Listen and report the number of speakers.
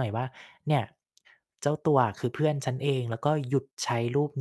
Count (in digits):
1